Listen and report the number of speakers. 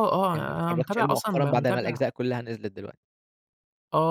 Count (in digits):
2